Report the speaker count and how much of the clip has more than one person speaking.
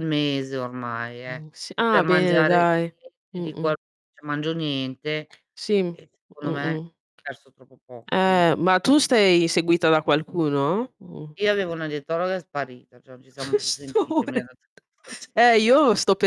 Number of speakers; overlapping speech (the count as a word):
two, about 17%